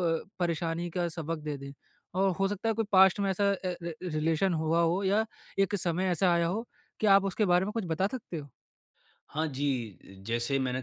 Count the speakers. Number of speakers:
two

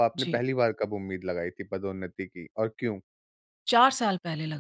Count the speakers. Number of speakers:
two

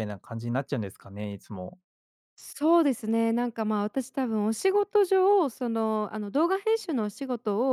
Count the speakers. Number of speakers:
two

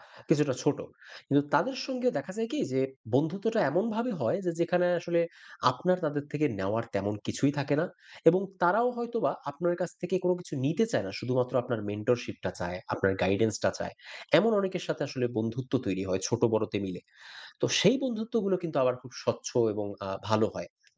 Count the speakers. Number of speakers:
one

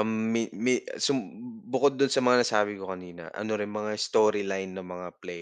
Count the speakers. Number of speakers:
one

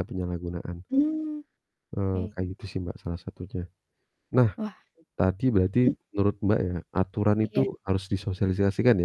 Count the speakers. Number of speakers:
two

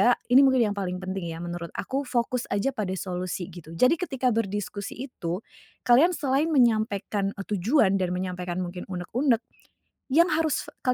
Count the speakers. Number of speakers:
one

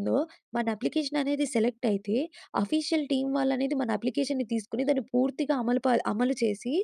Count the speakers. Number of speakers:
one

